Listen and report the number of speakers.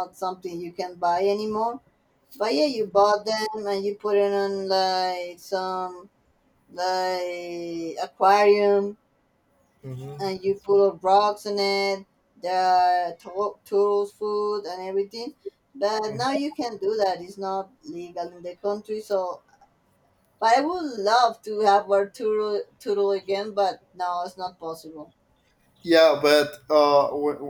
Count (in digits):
2